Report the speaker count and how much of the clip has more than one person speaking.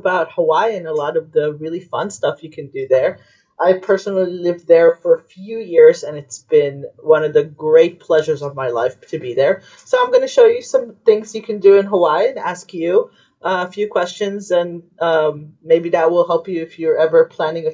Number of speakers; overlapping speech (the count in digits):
1, no overlap